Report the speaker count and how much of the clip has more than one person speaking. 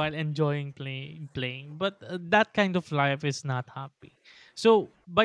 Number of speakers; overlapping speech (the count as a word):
one, no overlap